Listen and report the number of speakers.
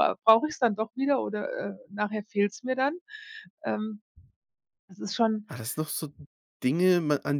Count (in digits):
2